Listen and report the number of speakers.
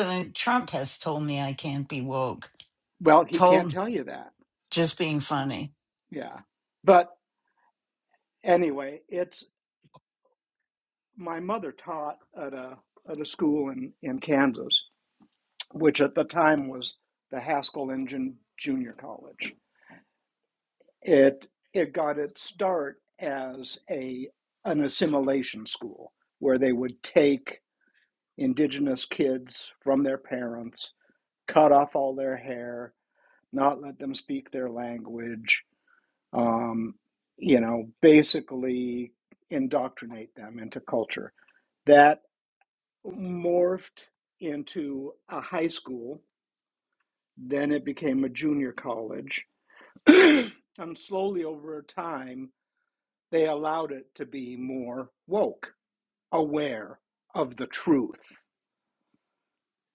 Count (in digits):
2